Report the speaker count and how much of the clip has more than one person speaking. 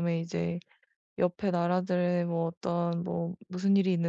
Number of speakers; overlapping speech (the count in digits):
1, no overlap